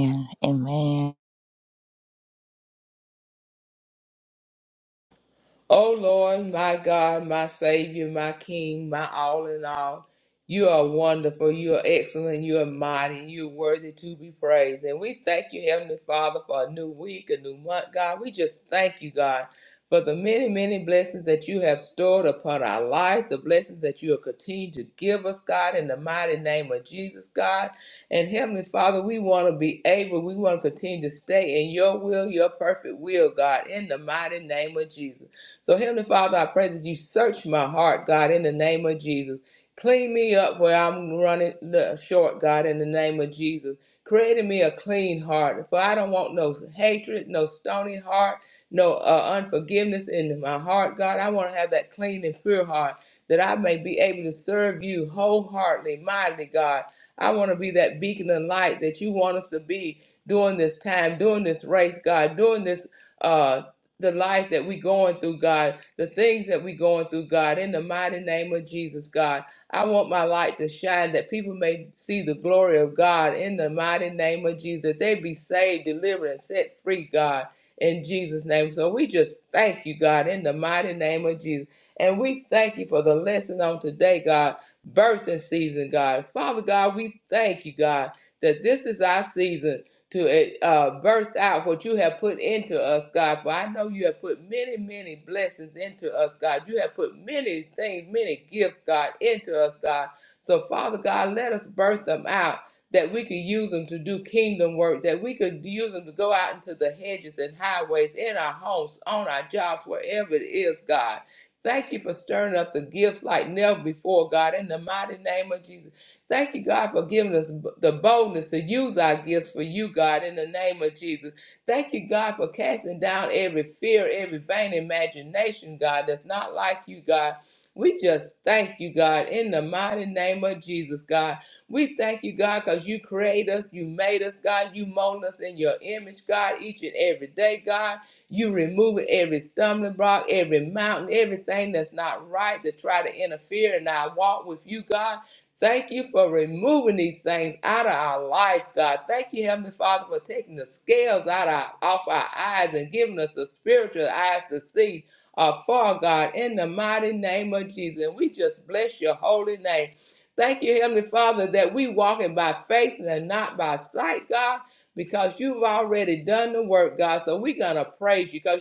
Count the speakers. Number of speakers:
2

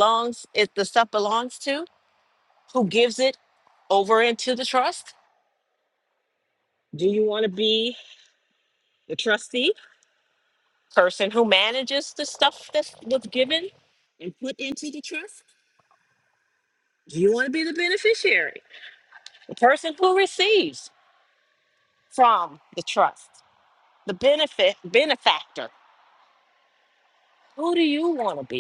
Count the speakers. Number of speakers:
1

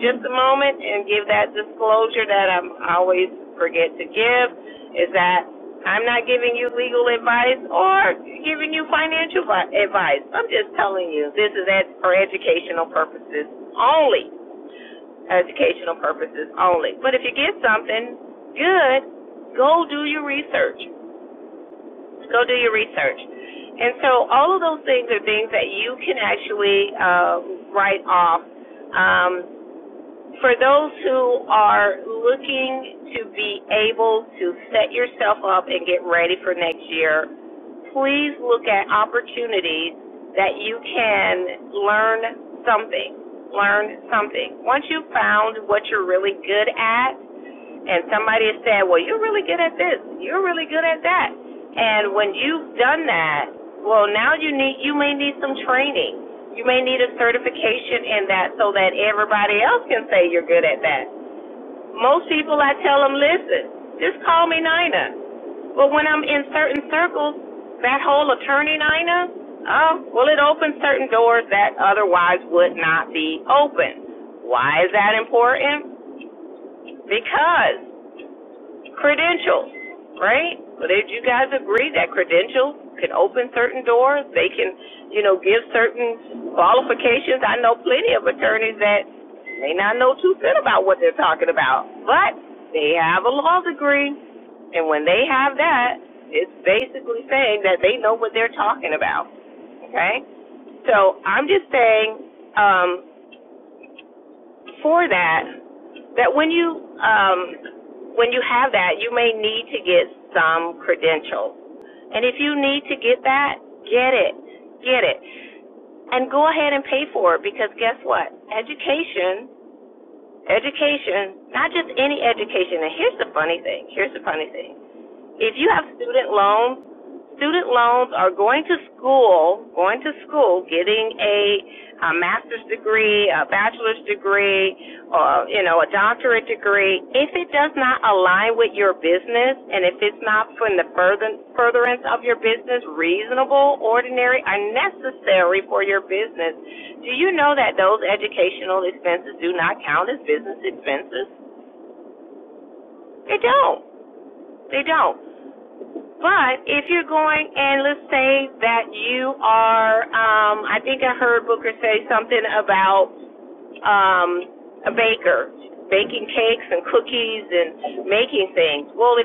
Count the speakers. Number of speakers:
1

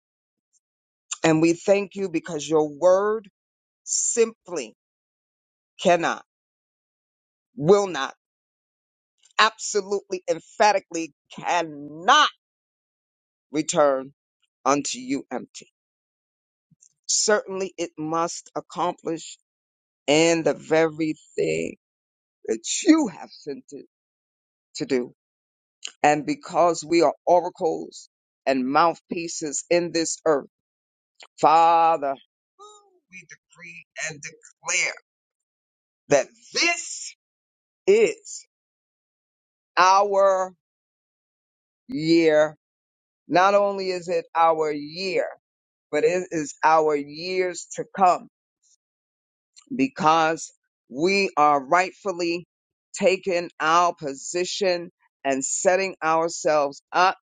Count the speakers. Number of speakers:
1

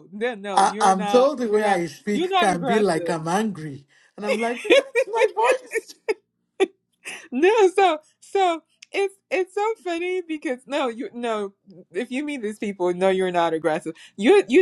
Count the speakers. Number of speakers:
2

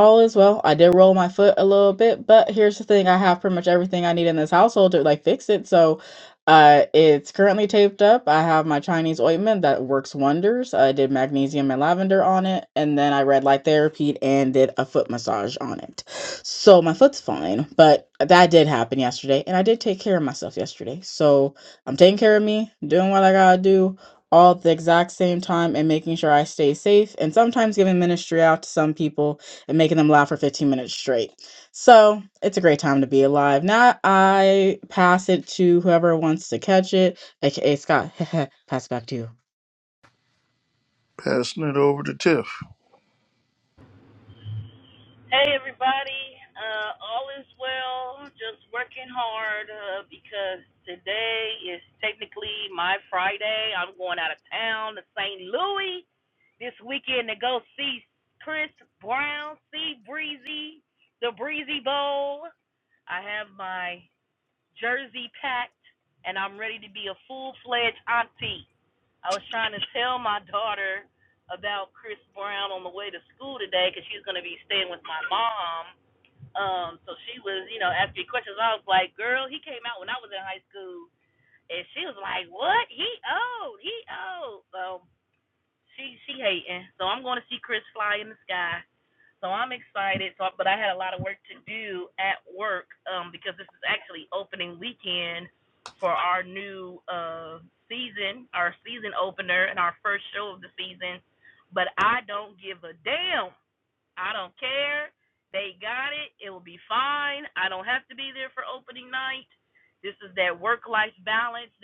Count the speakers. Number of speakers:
3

